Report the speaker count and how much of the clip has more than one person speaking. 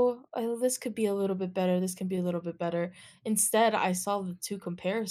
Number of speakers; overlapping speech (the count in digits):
1, no overlap